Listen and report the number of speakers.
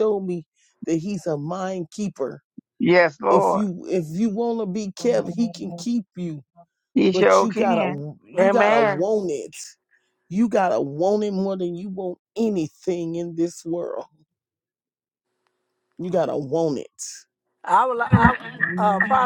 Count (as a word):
three